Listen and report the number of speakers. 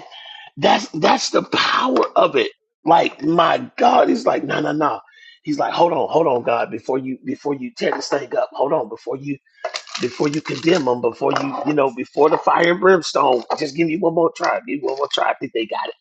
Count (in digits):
1